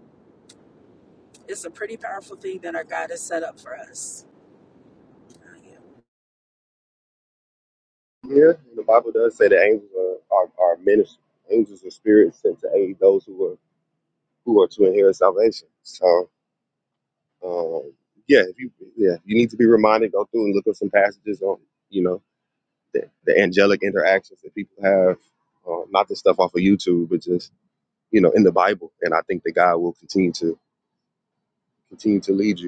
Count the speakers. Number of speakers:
2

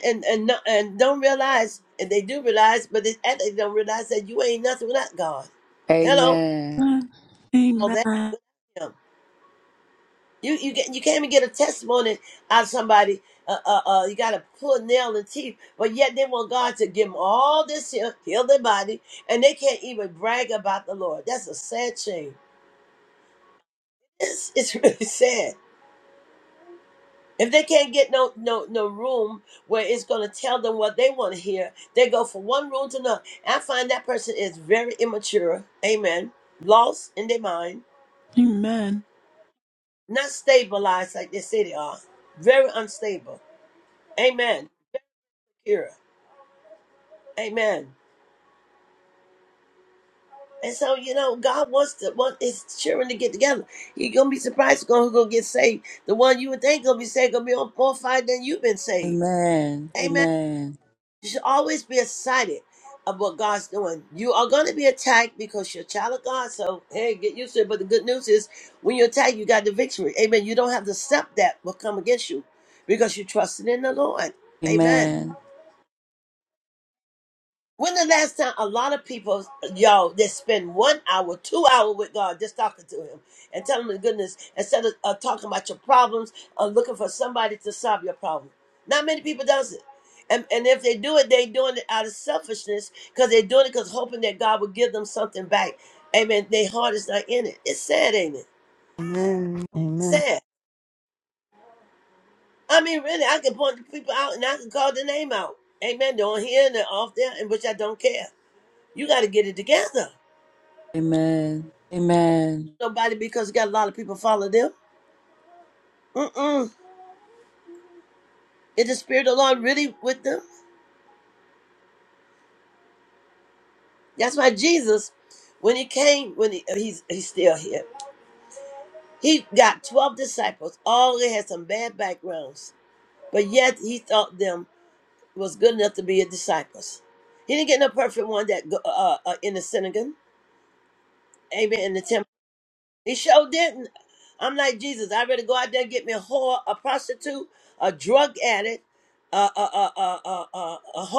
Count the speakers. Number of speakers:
4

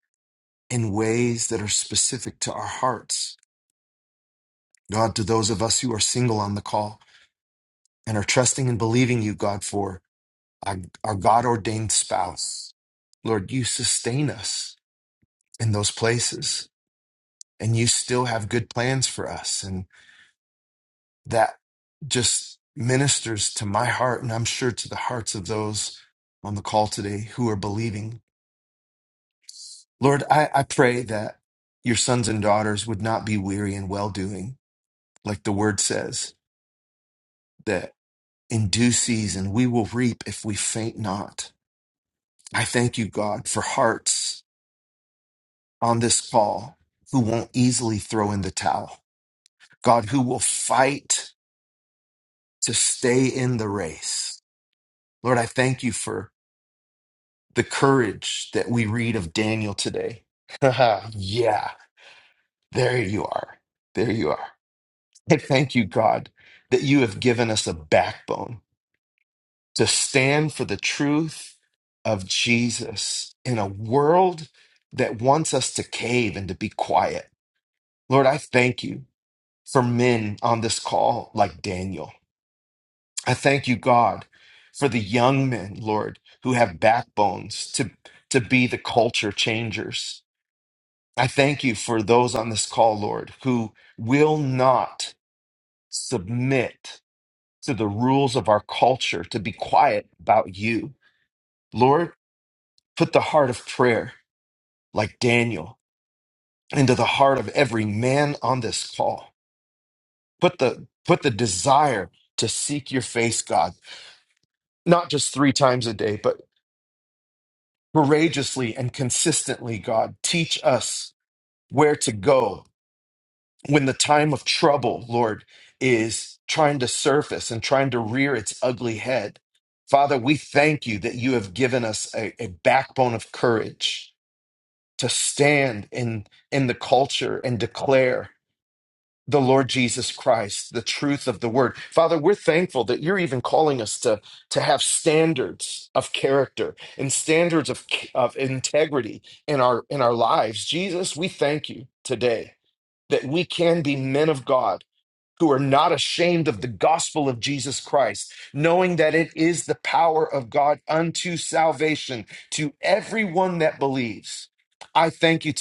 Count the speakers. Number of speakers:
1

